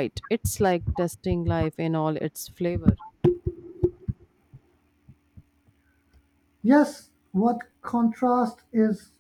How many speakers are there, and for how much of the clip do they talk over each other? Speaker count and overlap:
2, no overlap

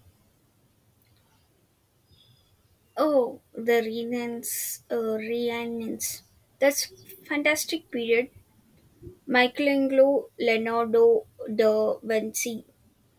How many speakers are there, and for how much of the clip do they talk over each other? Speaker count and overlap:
1, no overlap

